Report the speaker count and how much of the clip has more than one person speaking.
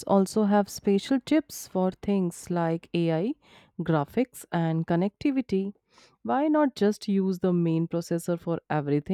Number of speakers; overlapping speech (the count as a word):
one, no overlap